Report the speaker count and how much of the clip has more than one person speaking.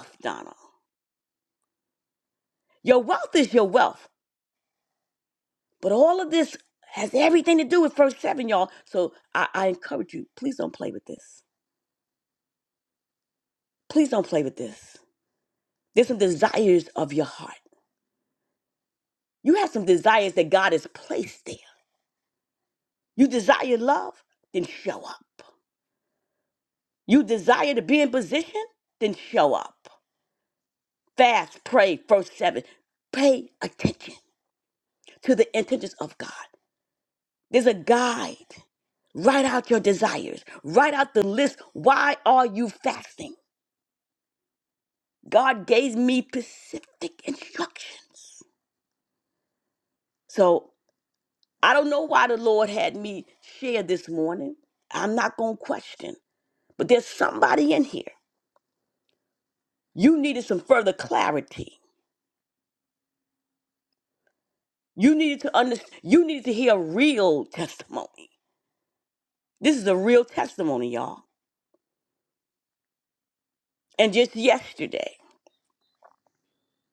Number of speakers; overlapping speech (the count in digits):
1, no overlap